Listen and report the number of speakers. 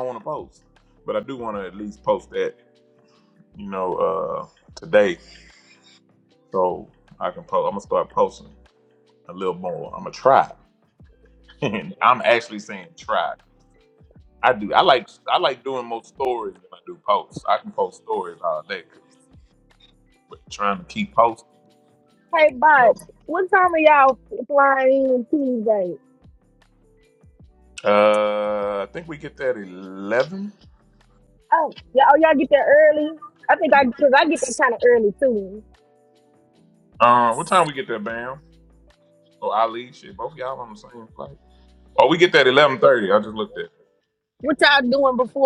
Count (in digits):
2